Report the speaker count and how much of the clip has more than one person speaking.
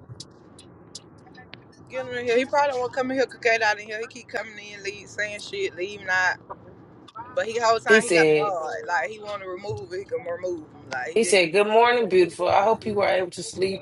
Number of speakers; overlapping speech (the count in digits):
2, about 7%